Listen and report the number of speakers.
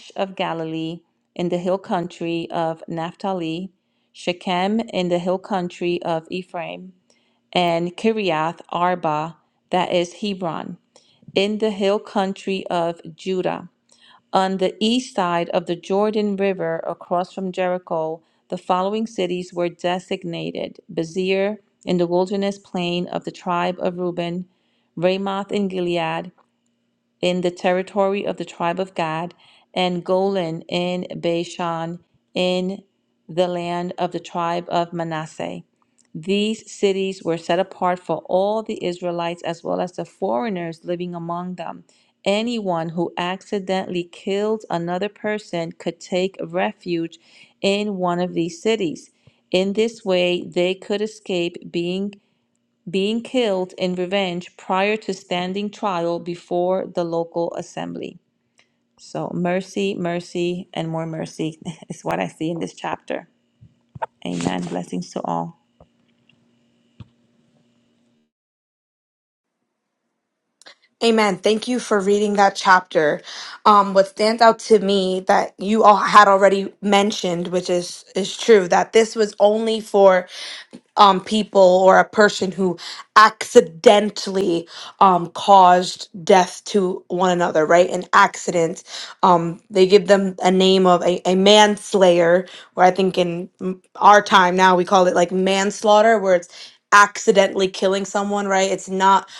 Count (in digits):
2